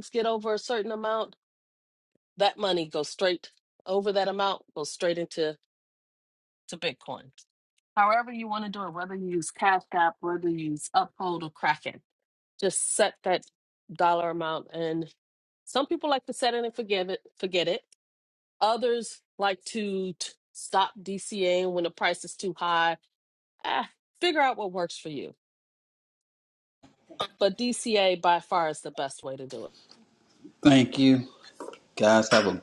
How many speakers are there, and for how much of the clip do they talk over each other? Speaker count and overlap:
two, no overlap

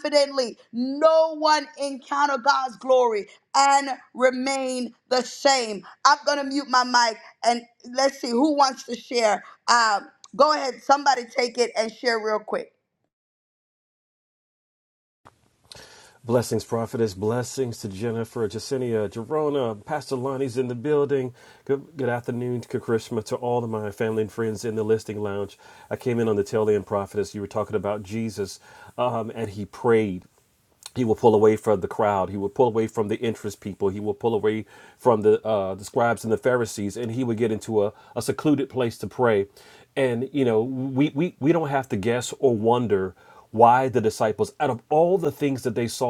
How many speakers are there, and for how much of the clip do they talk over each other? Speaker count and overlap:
two, no overlap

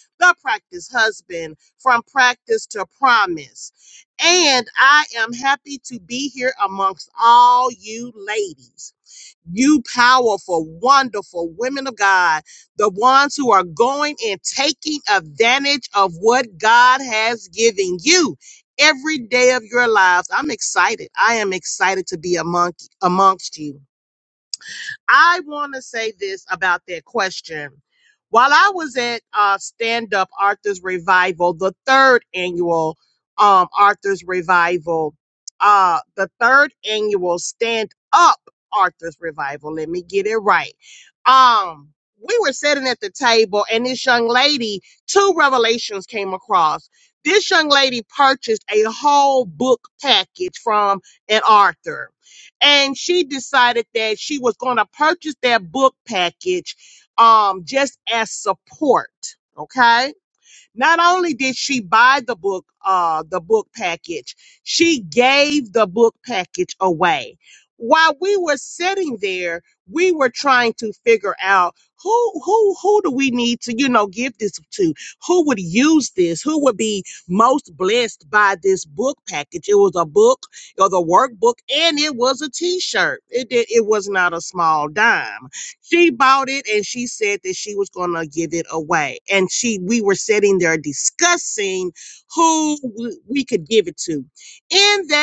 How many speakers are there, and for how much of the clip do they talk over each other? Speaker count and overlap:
one, no overlap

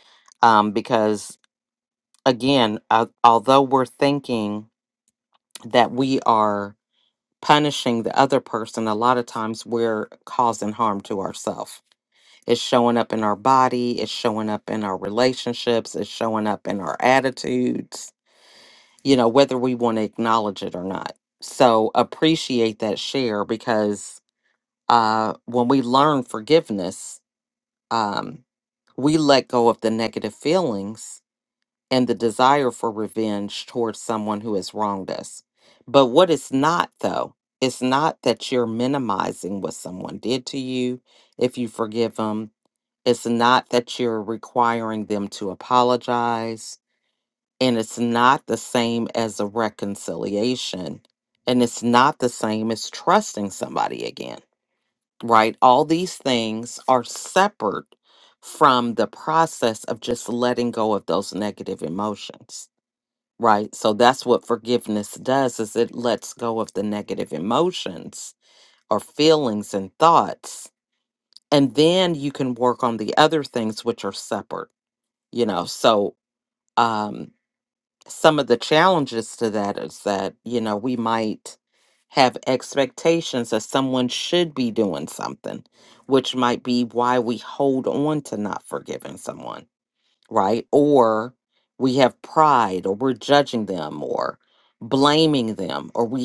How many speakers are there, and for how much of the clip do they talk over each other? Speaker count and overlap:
one, no overlap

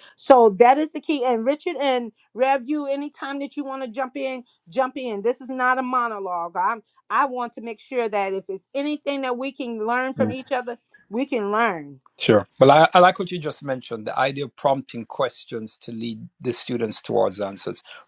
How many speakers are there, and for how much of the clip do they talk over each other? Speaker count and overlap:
two, about 1%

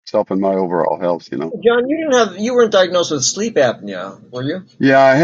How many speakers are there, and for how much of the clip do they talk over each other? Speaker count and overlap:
two, no overlap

